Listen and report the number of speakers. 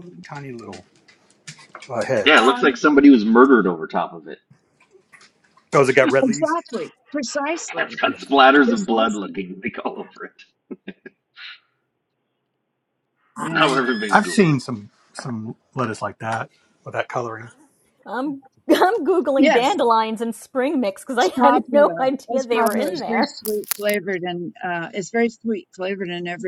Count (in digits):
4